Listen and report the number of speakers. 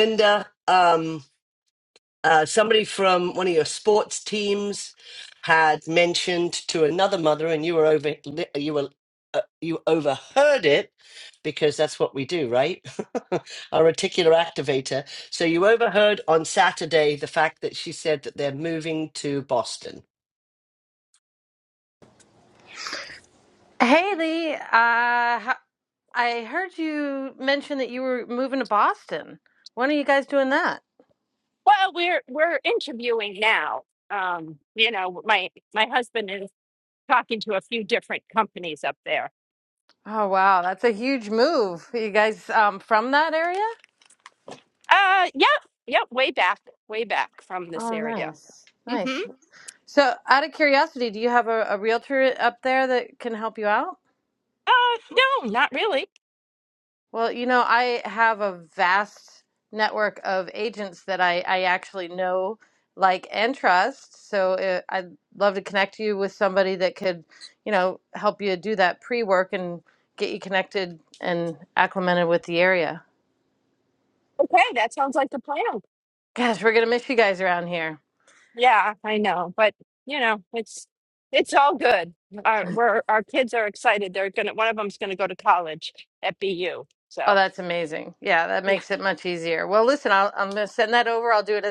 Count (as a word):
three